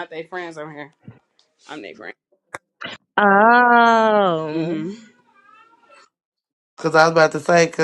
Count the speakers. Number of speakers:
three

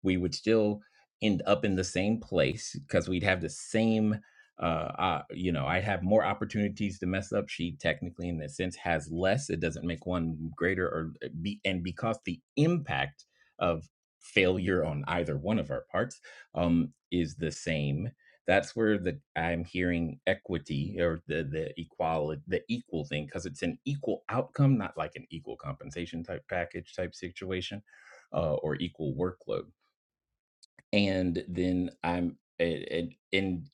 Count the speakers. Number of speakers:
one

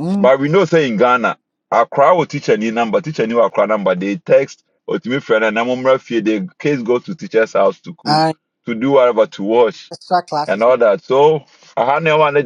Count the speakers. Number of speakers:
two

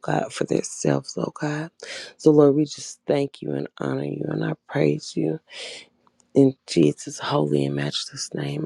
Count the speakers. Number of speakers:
one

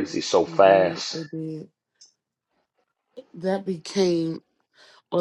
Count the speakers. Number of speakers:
two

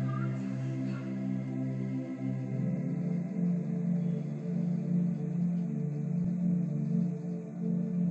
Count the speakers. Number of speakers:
zero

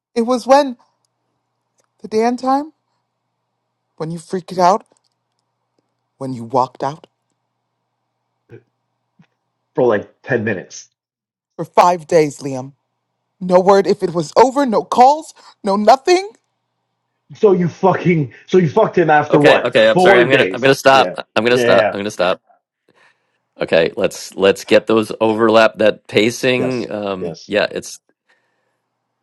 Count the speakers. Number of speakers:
three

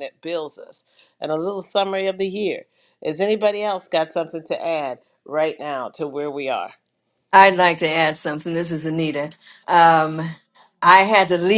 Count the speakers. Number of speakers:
two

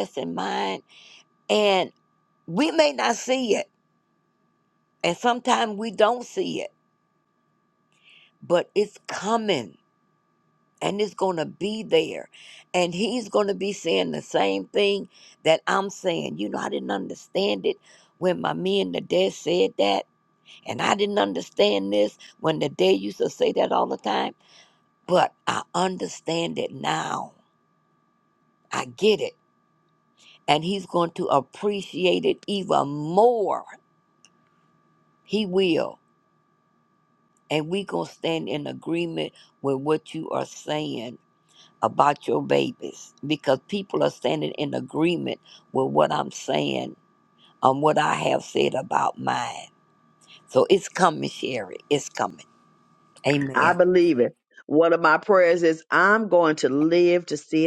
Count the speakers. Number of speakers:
two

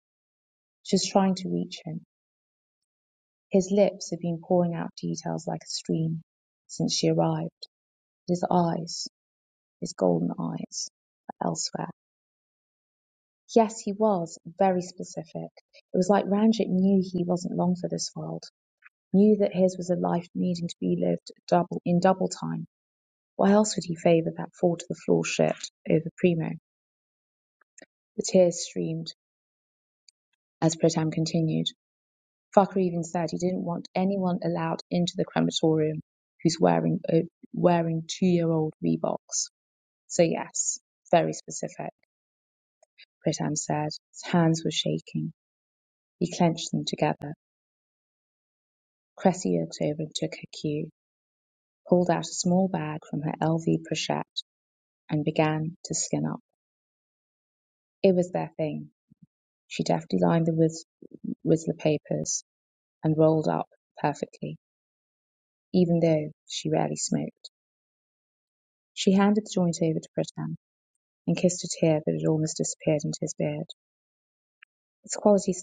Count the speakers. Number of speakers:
one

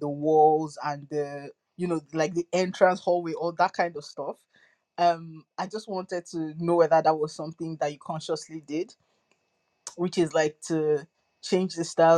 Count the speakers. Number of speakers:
one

